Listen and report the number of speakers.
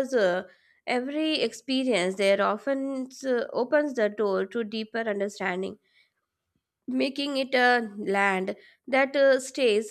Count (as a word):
one